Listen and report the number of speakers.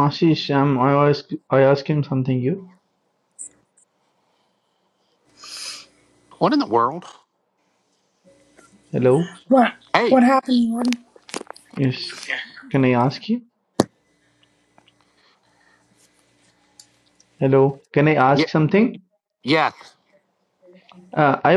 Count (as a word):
three